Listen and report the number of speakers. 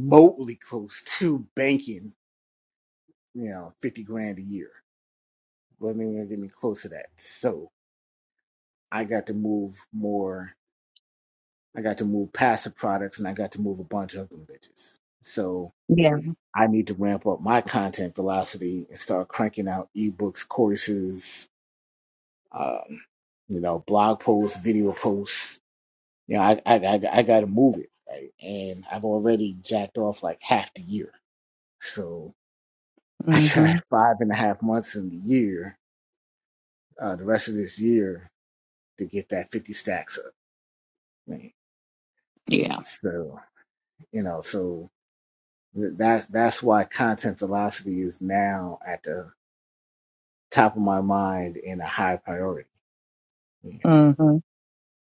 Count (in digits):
2